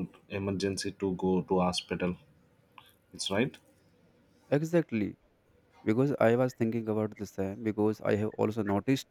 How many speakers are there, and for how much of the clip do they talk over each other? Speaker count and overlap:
2, no overlap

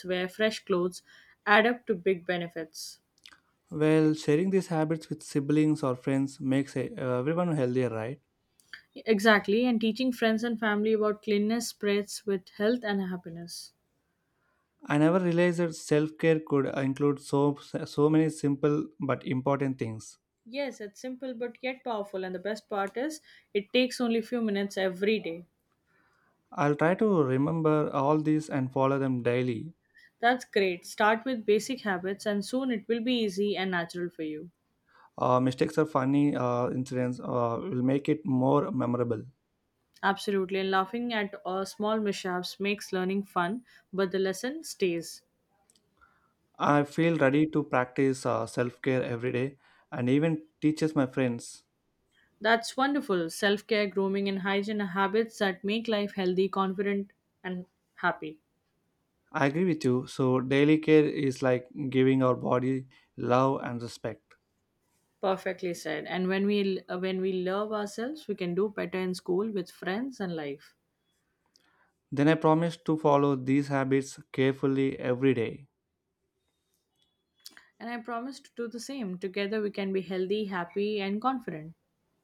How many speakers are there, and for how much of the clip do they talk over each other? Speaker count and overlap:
2, no overlap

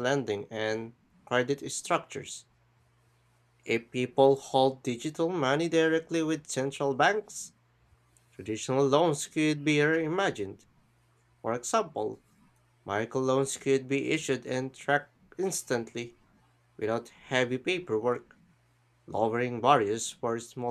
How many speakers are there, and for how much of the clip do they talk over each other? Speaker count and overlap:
1, no overlap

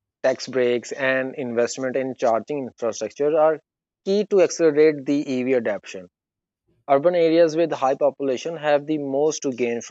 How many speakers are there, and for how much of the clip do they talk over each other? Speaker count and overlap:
1, no overlap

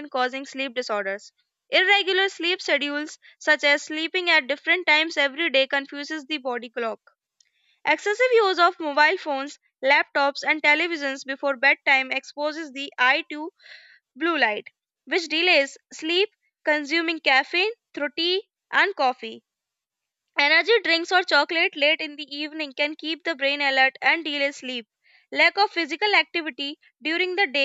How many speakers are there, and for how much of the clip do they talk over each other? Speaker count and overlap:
1, no overlap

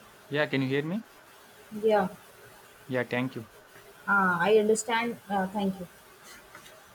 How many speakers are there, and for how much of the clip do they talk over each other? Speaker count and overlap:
2, no overlap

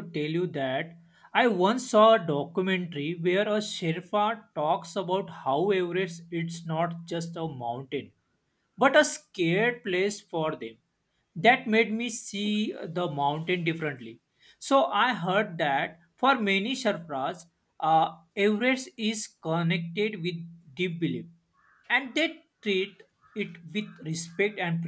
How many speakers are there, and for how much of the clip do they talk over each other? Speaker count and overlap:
1, no overlap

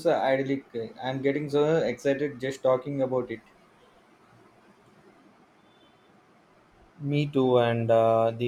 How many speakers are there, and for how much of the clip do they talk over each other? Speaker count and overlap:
2, no overlap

